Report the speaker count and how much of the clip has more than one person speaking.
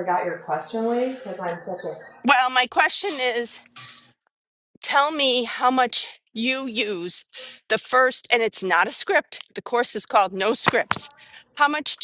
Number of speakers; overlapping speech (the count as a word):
two, no overlap